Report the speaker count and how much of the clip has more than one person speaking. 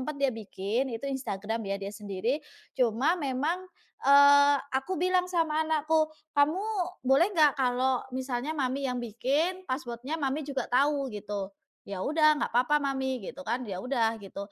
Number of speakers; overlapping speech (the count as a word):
one, no overlap